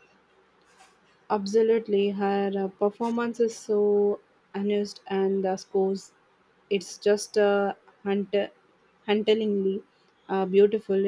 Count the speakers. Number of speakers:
1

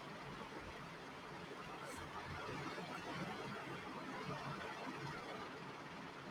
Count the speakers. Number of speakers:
0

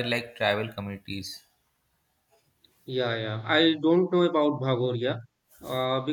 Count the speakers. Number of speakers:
2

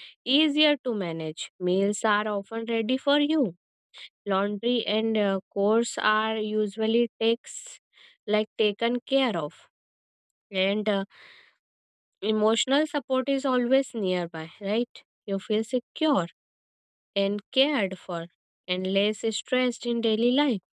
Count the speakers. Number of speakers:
1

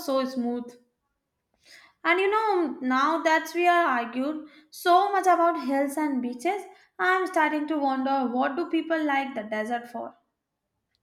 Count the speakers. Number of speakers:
1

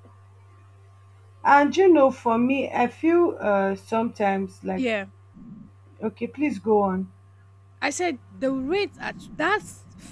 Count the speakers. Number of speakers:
2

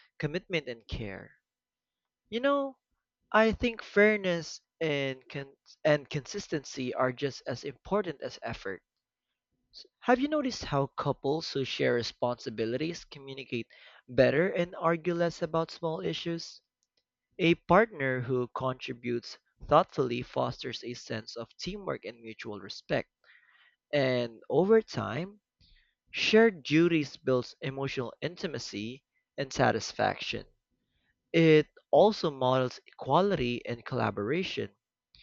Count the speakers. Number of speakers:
1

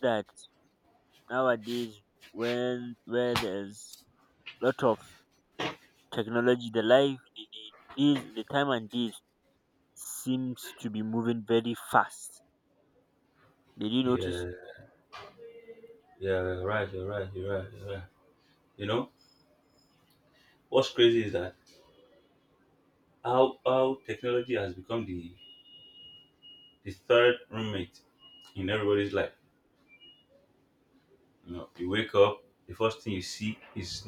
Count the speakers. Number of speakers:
2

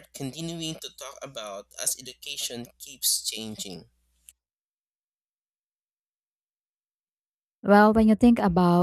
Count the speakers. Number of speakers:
2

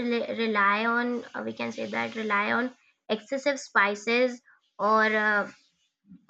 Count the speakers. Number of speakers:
1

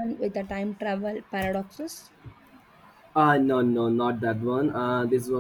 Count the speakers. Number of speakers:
2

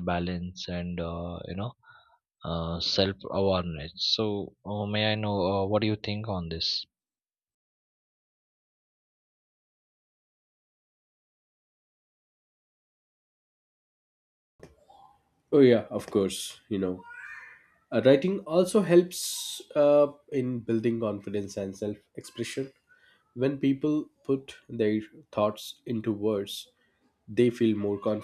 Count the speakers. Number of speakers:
2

